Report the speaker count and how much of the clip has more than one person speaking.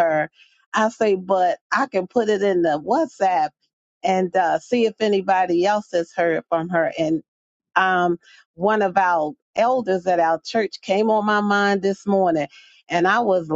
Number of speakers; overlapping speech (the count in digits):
1, no overlap